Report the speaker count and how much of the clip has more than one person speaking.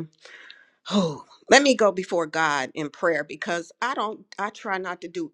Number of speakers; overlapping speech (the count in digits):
1, no overlap